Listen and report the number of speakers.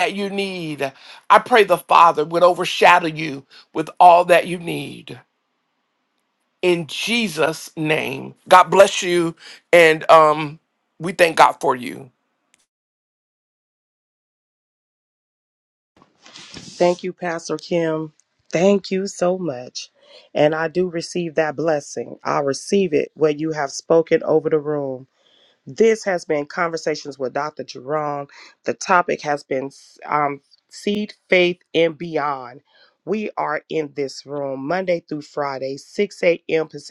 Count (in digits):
2